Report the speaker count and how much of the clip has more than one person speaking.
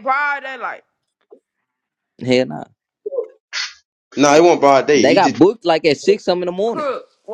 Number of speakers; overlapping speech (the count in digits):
3, about 8%